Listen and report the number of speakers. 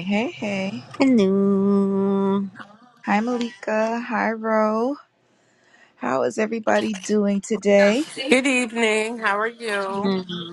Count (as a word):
three